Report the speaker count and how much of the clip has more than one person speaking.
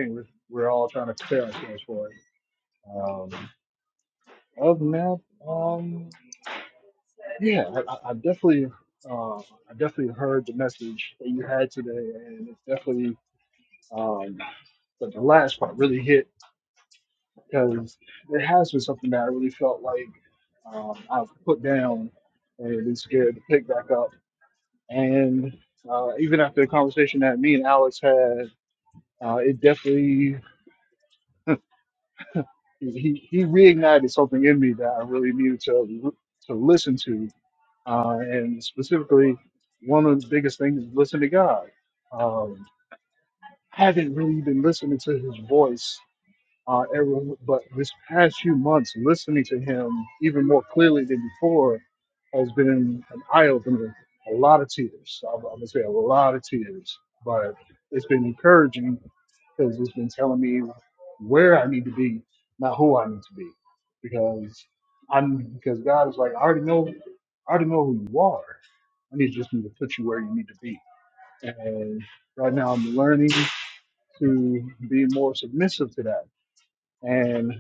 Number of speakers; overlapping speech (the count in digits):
1, no overlap